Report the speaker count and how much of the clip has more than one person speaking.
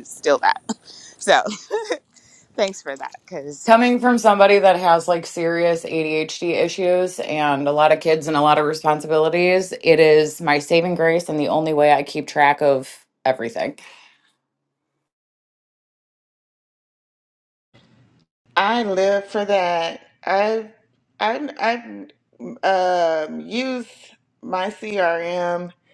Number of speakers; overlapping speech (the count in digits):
3, under 1%